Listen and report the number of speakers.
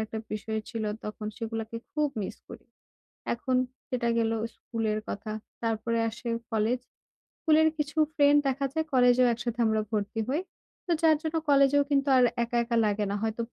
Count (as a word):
one